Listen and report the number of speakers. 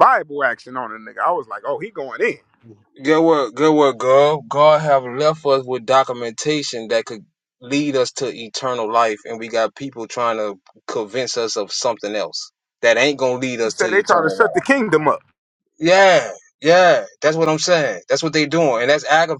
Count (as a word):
two